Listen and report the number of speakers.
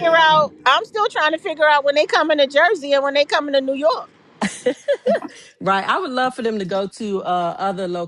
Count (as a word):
two